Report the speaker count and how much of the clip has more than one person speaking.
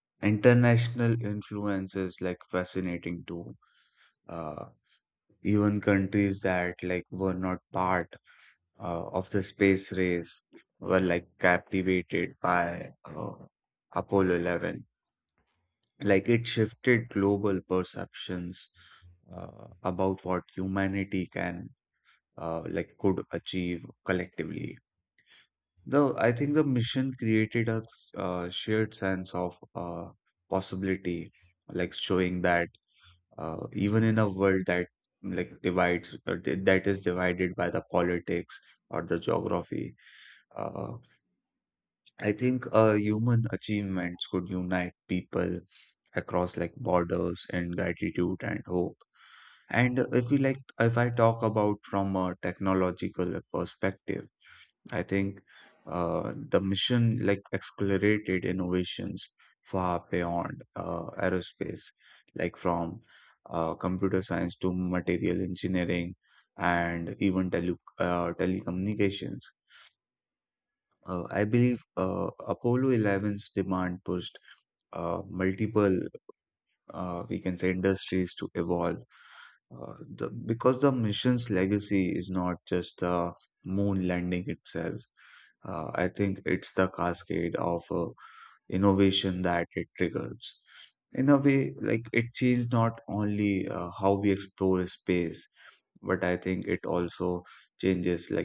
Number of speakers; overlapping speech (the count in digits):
1, no overlap